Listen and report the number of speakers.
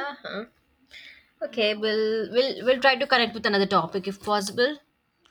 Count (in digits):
1